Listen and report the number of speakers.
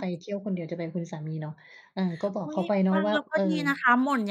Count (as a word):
two